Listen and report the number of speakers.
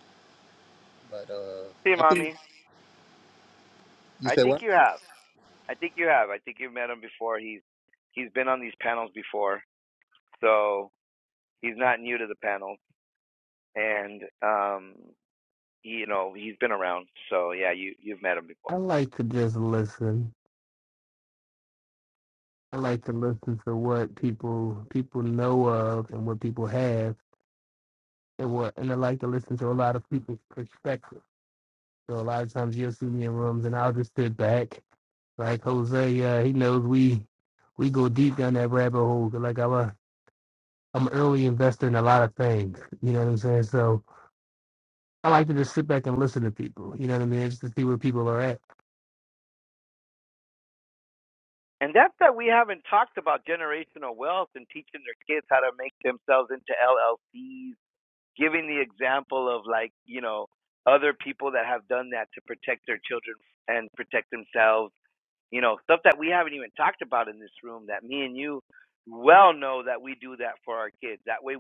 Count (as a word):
three